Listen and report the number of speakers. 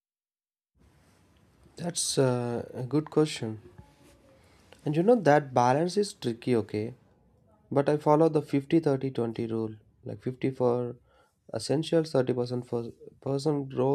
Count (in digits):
1